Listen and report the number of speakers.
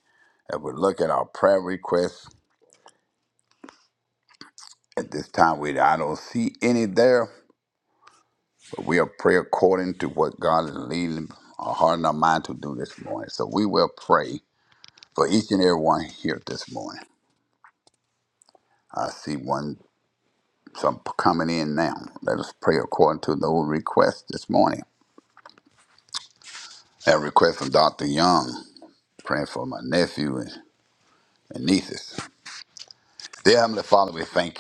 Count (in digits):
1